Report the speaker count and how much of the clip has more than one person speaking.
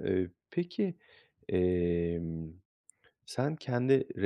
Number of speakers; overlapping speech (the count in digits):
1, no overlap